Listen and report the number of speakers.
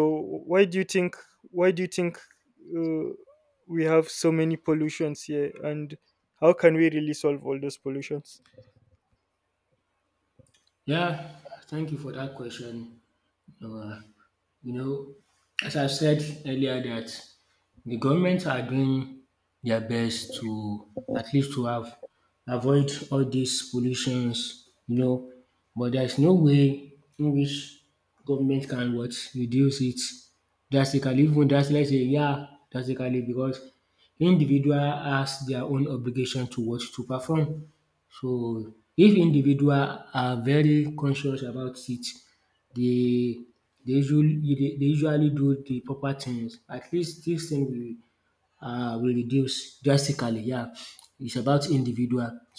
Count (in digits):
2